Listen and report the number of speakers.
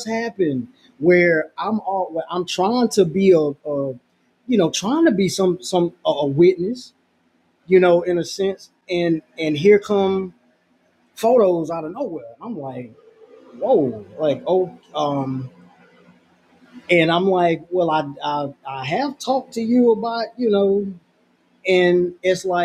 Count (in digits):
1